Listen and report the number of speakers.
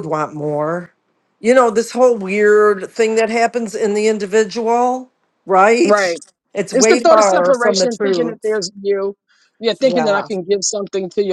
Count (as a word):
two